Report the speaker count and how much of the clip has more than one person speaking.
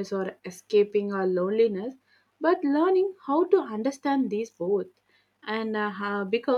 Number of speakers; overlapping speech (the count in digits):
1, no overlap